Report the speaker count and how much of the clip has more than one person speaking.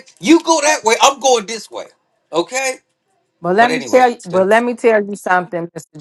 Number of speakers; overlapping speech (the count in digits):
2, about 14%